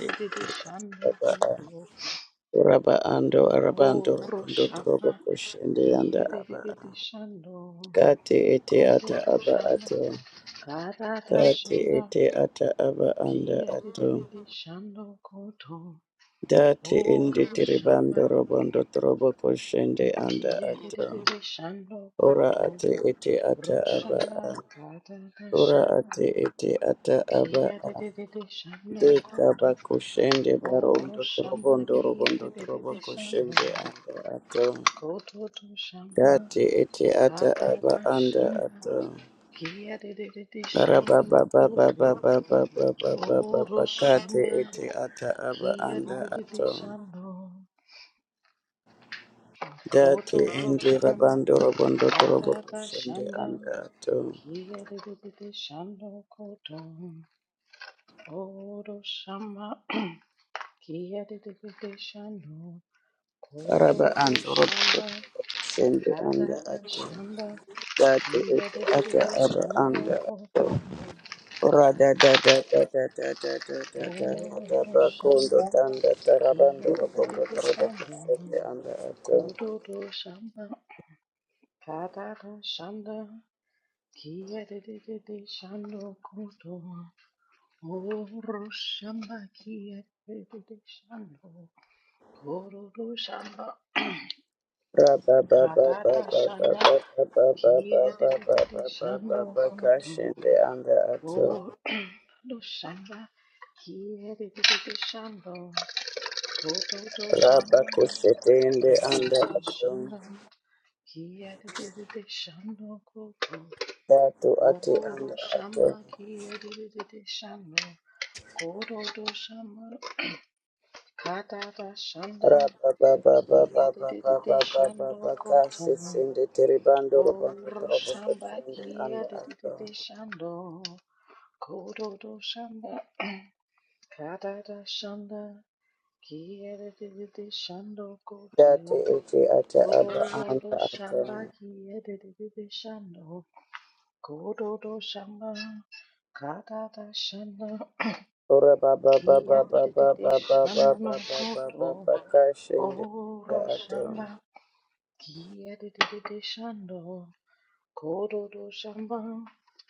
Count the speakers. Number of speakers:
2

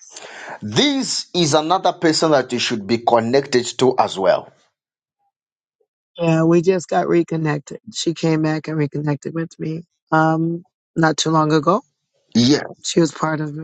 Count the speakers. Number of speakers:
2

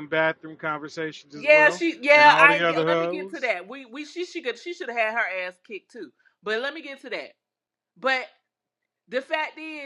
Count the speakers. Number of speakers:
2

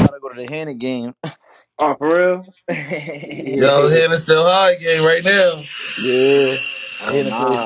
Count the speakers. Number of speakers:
3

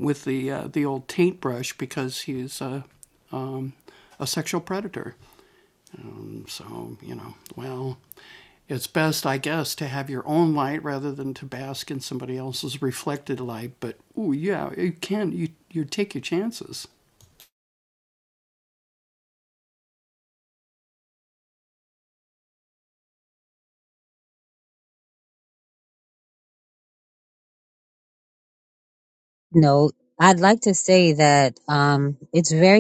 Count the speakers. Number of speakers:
2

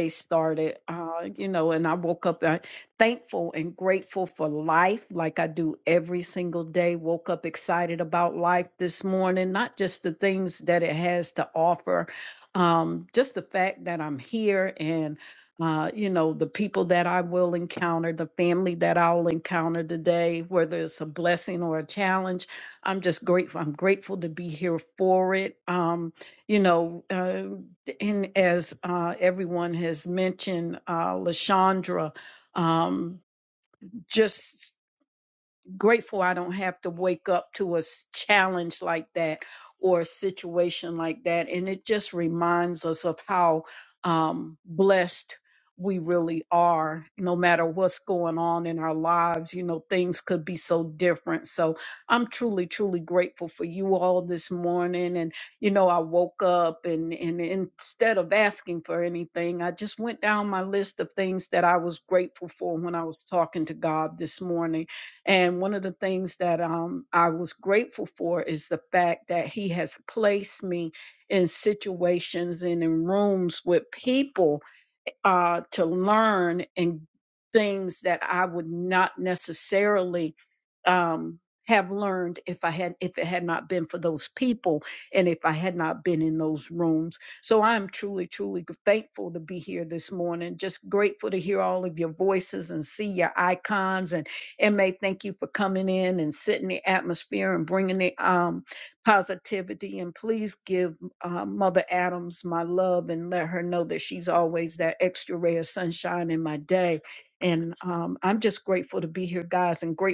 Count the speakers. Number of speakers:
1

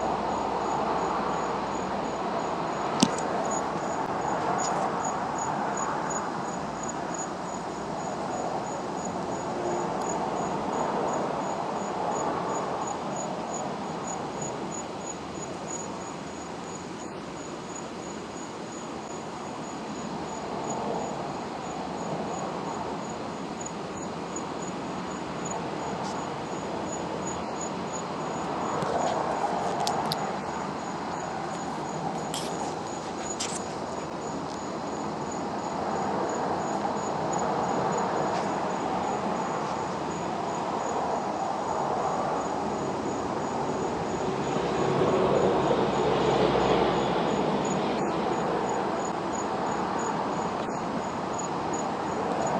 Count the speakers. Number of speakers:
0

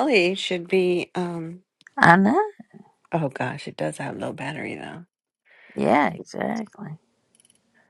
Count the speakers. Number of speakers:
2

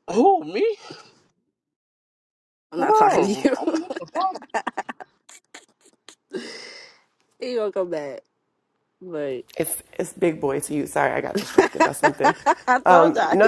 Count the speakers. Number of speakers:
3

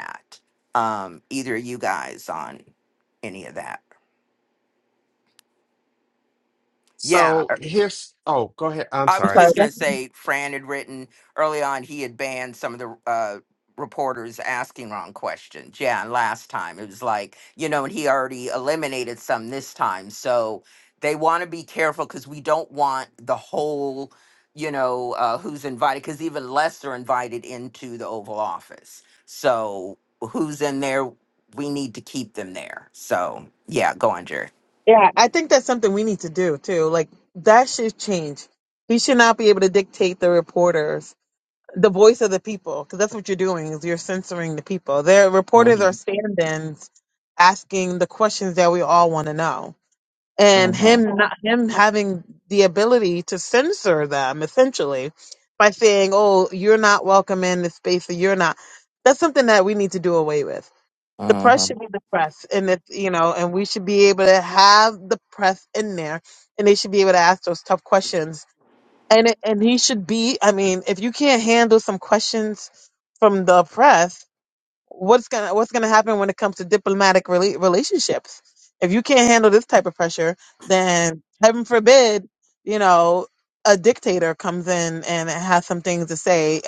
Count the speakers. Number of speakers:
3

